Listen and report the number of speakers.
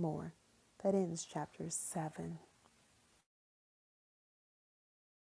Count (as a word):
one